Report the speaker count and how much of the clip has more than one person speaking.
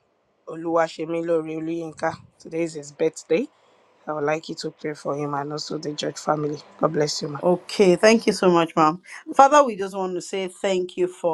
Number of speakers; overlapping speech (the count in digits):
2, under 1%